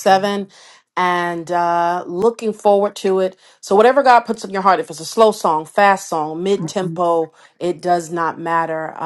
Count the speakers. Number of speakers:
one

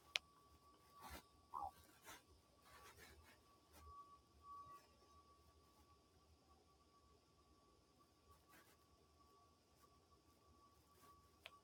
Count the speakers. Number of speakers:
zero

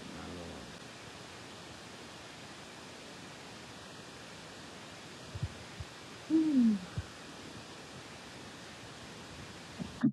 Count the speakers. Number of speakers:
zero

